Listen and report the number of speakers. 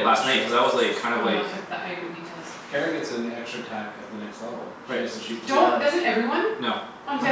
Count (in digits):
3